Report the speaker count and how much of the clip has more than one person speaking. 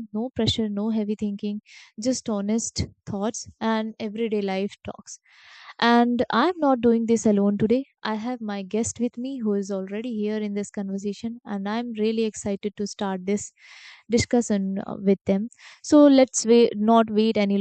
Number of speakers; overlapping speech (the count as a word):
one, no overlap